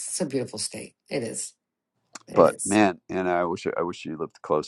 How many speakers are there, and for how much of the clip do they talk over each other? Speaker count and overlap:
2, about 5%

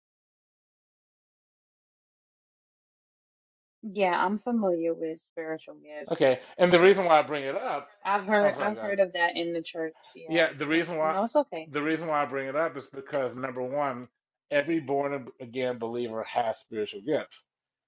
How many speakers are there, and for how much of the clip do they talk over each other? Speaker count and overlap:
2, about 8%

